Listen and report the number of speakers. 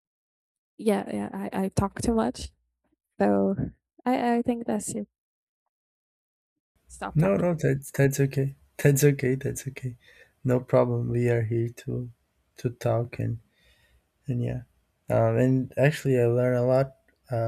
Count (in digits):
2